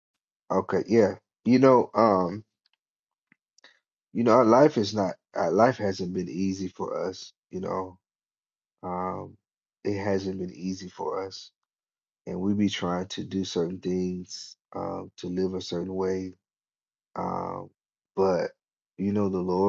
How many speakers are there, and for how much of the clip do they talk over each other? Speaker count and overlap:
one, no overlap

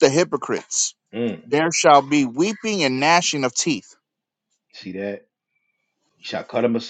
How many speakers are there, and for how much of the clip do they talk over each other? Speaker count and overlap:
two, no overlap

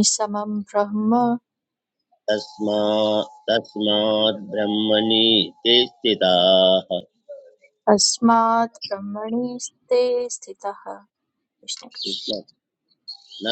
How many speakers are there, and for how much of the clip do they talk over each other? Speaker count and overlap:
two, no overlap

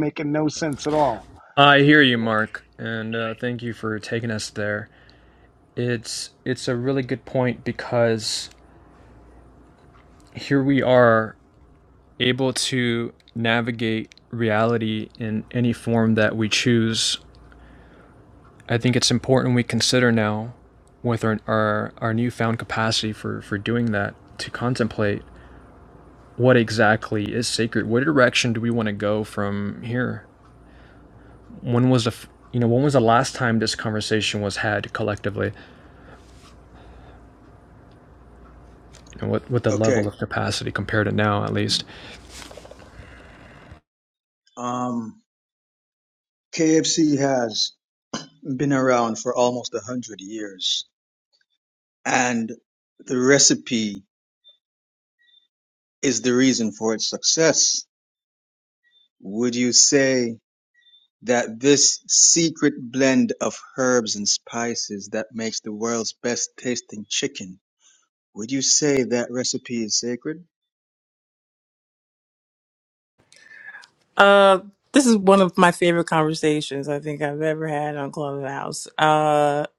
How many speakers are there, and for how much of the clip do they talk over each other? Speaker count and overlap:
four, under 1%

